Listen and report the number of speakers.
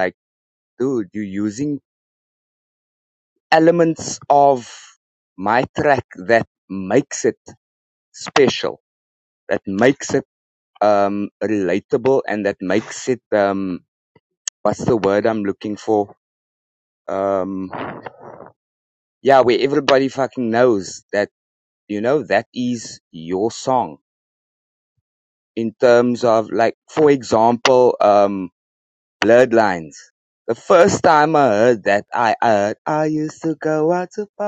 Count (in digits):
1